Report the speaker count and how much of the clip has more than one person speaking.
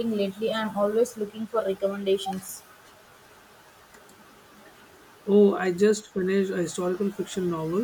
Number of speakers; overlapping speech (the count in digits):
2, no overlap